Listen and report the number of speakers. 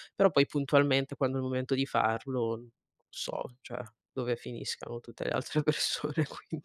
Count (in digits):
1